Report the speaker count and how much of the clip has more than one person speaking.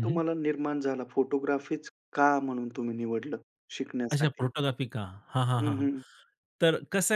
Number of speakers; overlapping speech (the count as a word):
two, about 11%